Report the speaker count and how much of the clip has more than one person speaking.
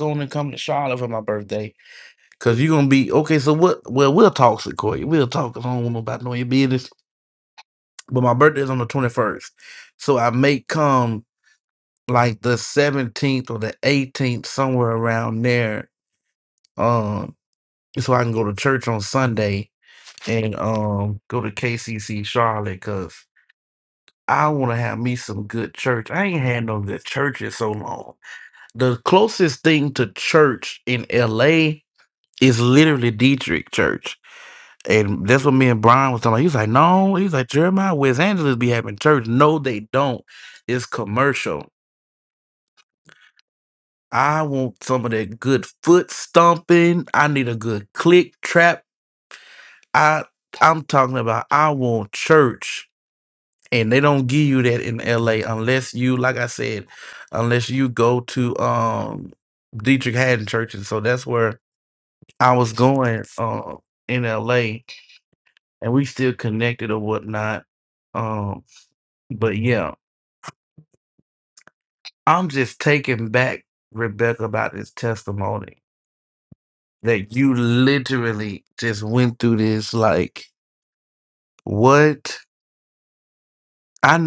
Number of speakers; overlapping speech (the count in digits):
1, no overlap